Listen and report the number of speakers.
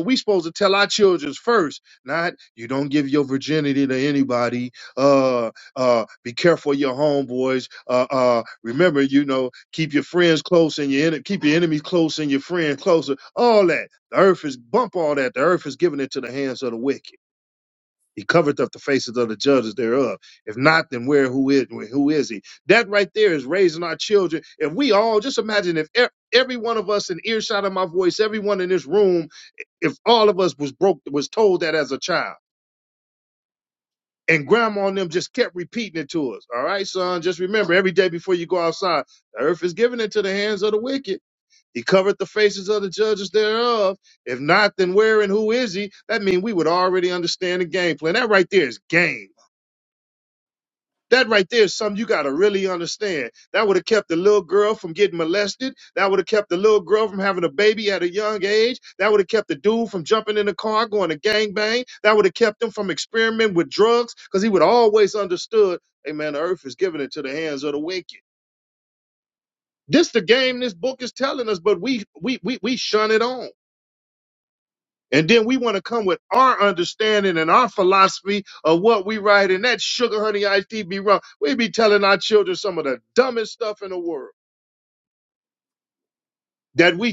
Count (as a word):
one